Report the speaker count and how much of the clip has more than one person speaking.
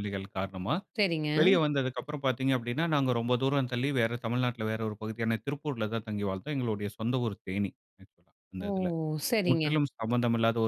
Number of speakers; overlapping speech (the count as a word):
two, about 4%